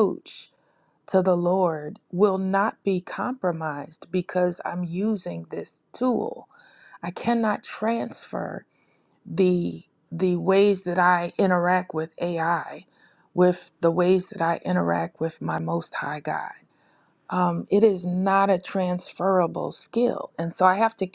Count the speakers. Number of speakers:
1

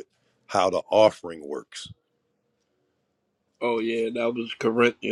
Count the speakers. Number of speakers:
2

